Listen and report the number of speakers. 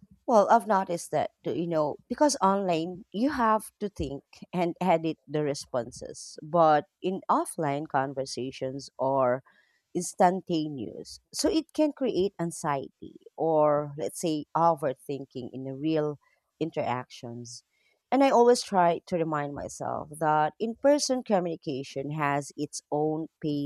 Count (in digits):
1